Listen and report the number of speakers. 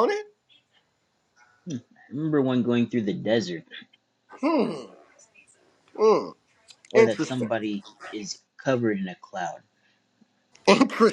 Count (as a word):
two